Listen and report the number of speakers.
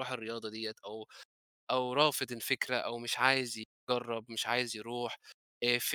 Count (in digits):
1